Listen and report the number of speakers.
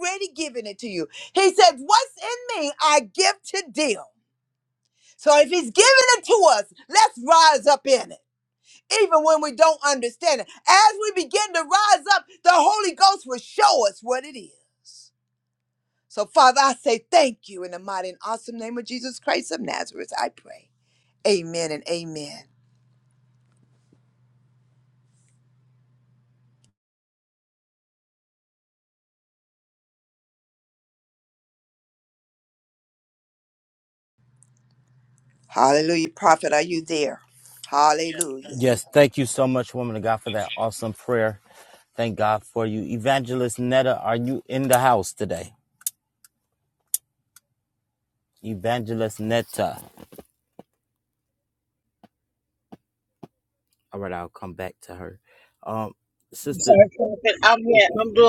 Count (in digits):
3